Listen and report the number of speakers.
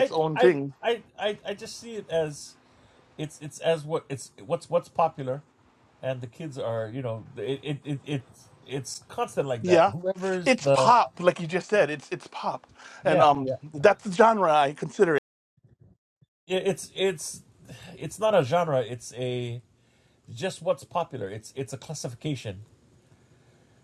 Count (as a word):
two